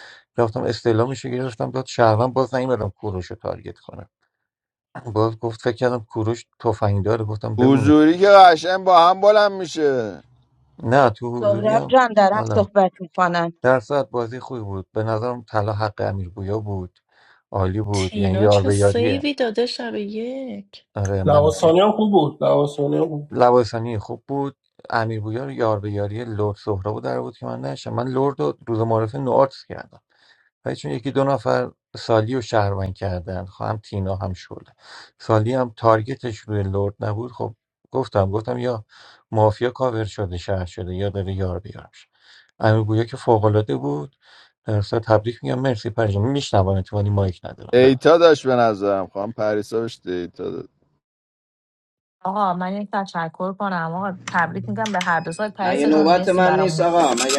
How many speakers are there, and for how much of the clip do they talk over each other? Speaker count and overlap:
7, about 8%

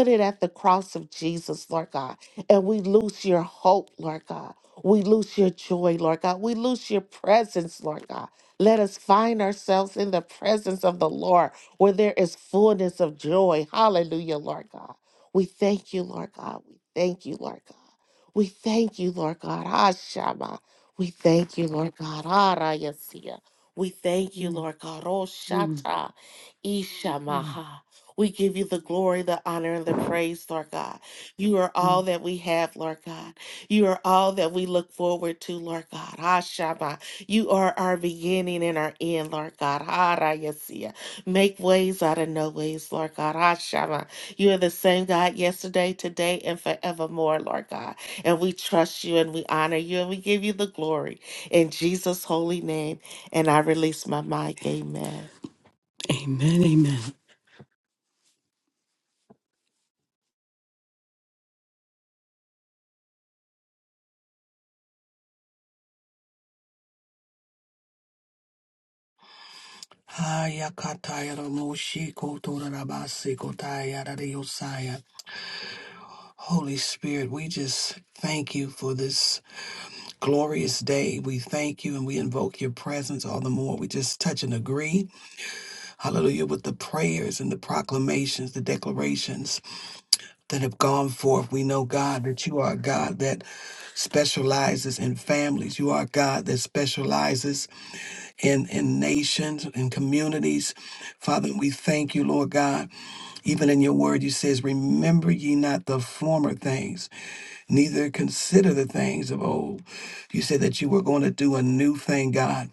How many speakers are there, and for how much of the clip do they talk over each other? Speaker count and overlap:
3, about 1%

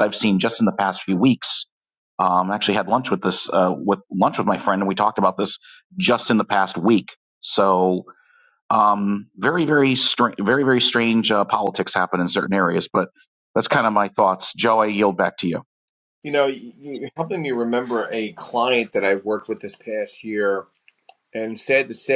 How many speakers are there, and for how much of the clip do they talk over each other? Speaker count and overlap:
2, no overlap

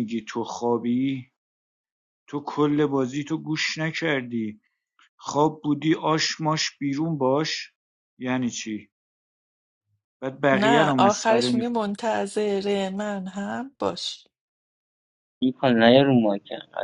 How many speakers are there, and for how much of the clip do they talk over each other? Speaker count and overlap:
3, about 6%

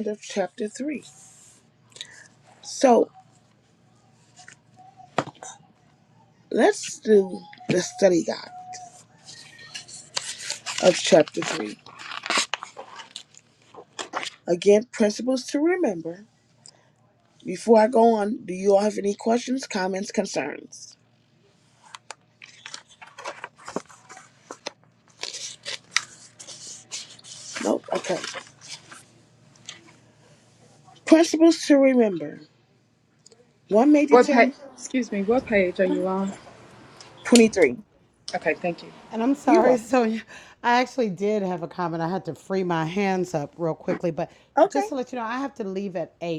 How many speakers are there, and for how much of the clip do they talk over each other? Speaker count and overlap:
3, about 2%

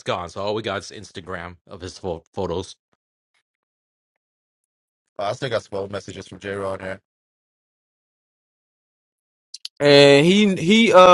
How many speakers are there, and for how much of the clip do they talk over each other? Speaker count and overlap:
3, no overlap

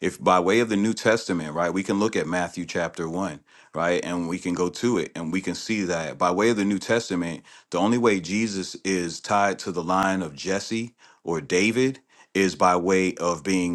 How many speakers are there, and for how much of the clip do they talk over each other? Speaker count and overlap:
1, no overlap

